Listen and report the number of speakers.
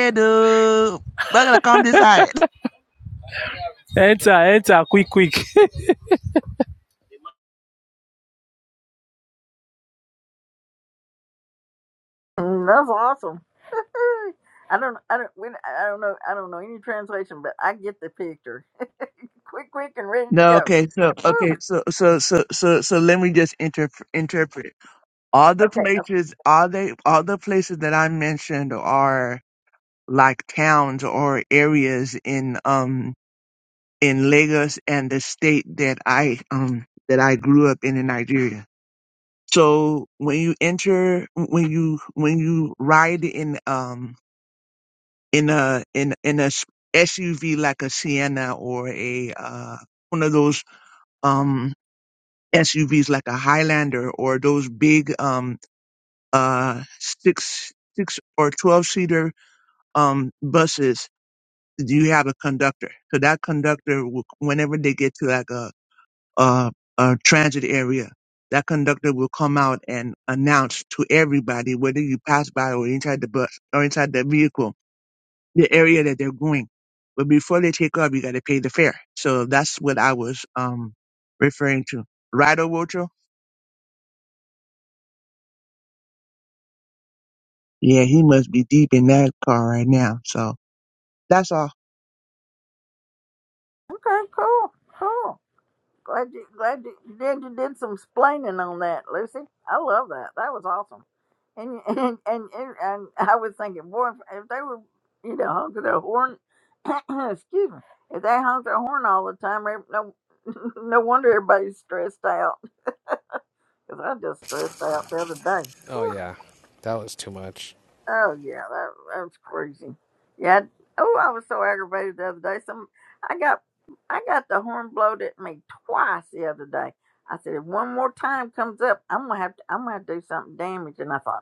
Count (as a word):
four